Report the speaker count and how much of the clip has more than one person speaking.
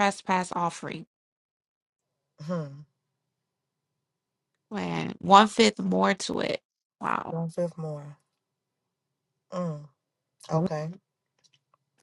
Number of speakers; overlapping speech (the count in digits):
2, about 1%